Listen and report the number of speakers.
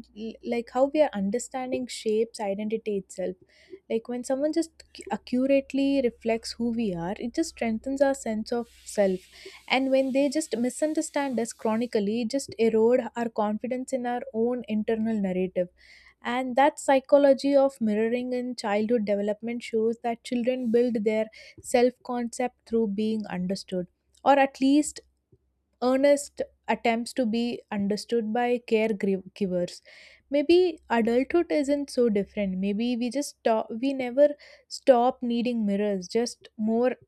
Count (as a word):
one